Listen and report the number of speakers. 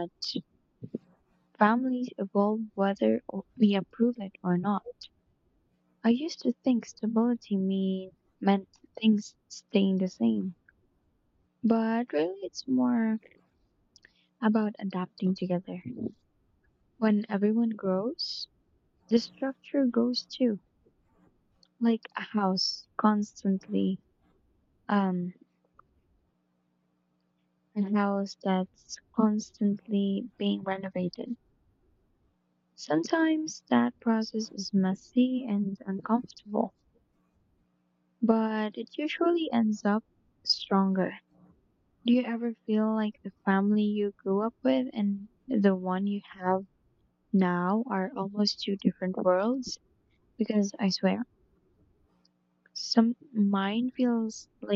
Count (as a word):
one